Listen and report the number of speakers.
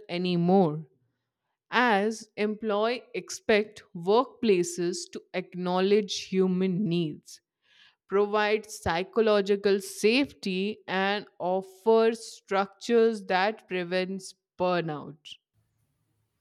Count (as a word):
one